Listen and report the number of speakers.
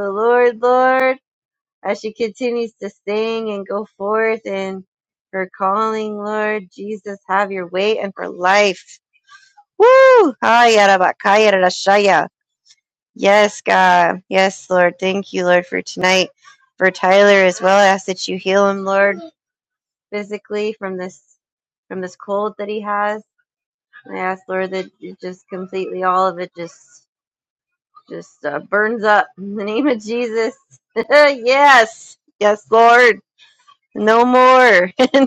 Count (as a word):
one